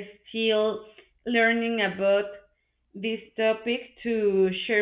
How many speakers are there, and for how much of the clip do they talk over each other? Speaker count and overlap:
1, no overlap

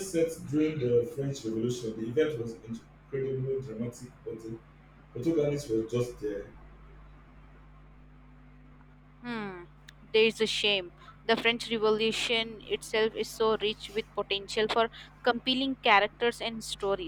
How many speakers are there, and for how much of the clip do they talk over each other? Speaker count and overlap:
2, no overlap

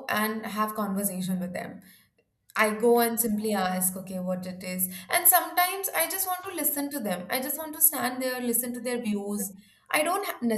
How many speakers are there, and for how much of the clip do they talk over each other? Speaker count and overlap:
1, no overlap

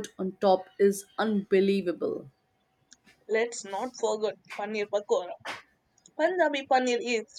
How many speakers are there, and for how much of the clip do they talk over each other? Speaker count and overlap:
2, no overlap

